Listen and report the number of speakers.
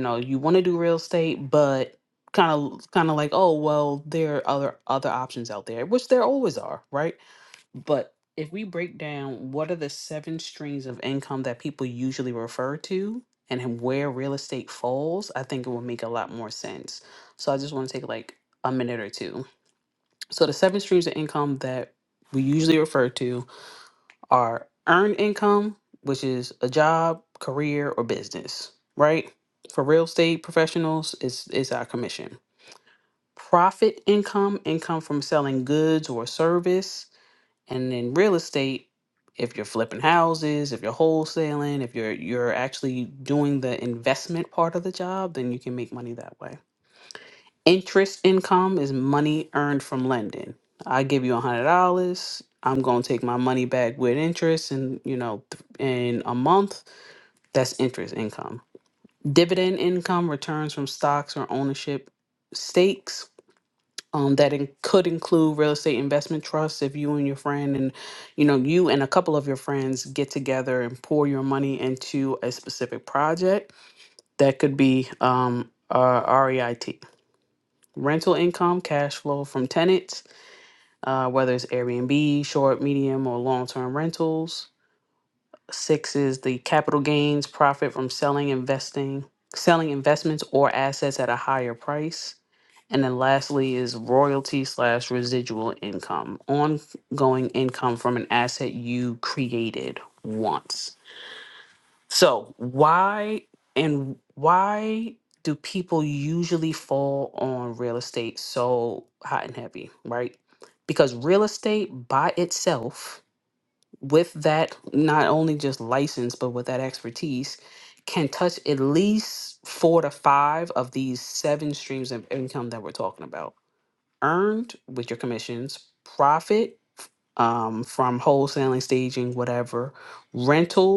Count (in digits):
1